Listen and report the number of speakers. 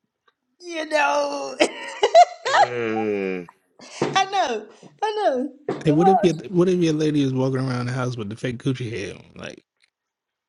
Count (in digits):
3